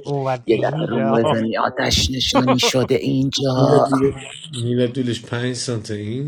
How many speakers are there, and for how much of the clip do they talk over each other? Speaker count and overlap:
three, about 13%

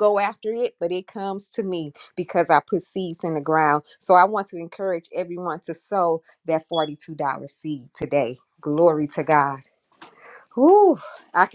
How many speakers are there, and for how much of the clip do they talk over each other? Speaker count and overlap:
one, no overlap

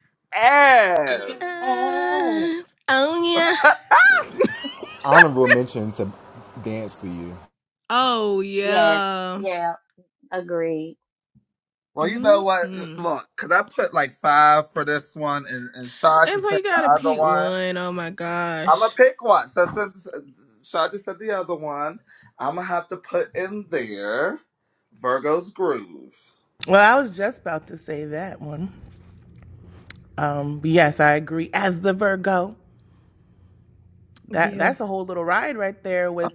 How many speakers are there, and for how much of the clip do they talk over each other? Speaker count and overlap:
five, about 12%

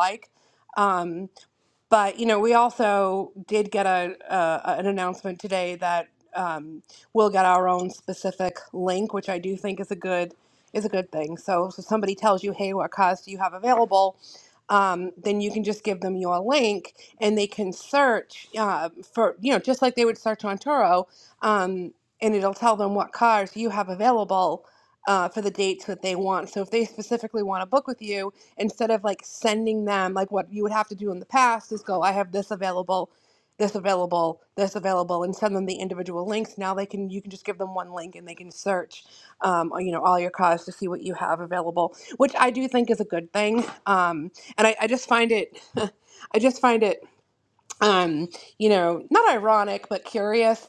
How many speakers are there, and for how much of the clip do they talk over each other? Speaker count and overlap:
one, no overlap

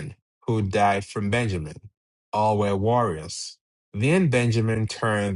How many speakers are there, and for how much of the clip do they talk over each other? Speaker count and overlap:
one, no overlap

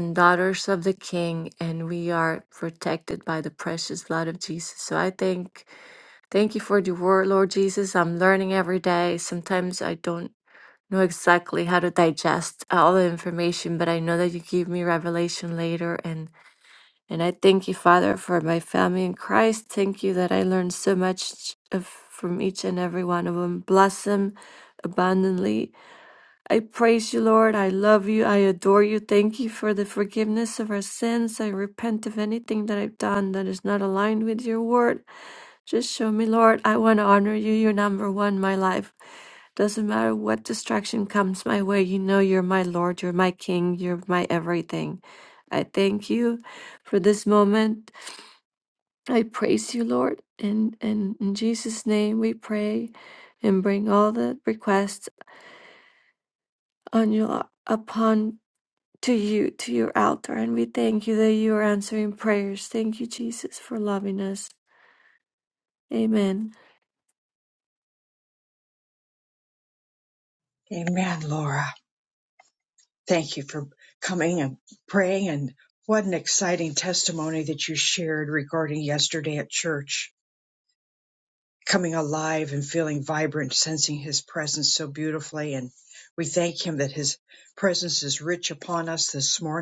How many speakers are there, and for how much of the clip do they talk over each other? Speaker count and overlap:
two, no overlap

